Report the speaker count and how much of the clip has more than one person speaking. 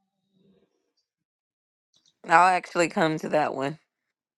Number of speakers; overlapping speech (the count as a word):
one, no overlap